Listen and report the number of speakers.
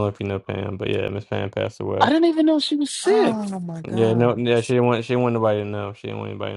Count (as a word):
three